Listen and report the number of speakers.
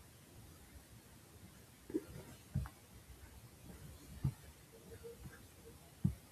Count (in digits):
0